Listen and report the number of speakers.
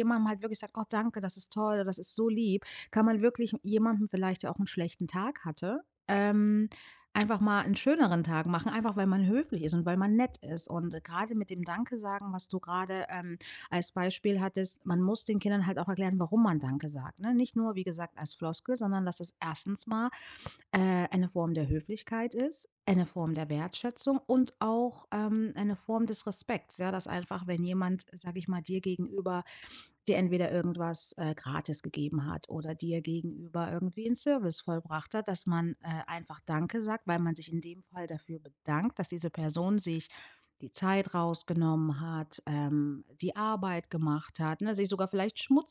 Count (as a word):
one